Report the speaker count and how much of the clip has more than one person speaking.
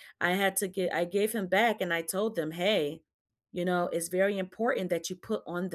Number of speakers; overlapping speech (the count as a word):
one, no overlap